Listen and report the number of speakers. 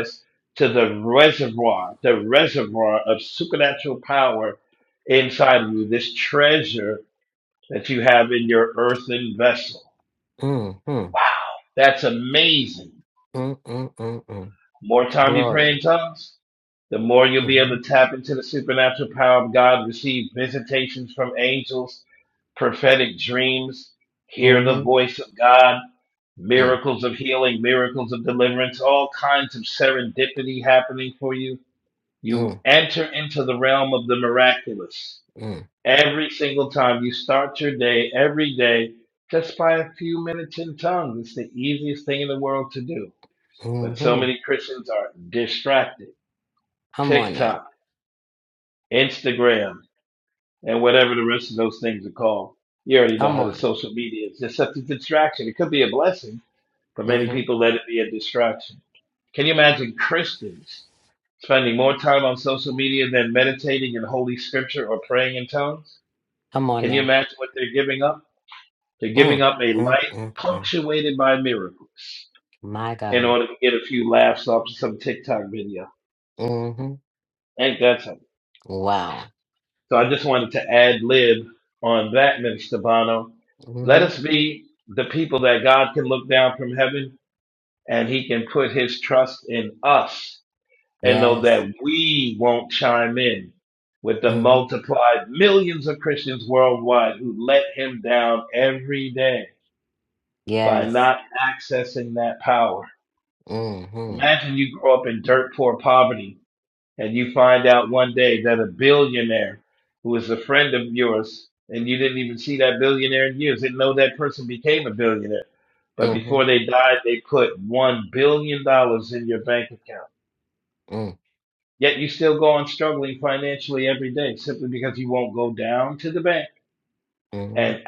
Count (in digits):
2